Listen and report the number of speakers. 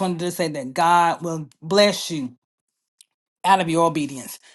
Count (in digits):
1